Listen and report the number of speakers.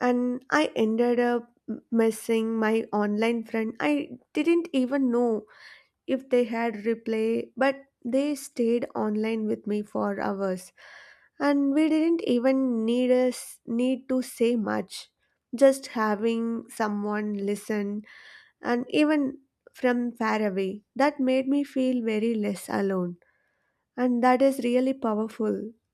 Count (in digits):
1